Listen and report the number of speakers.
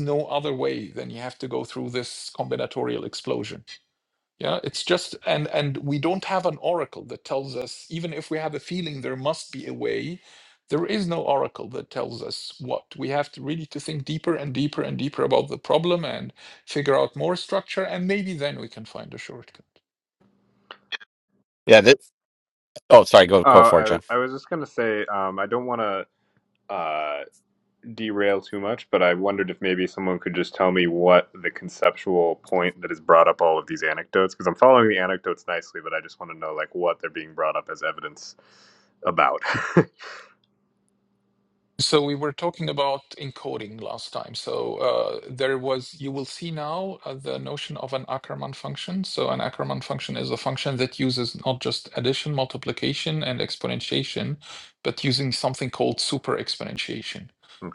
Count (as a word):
three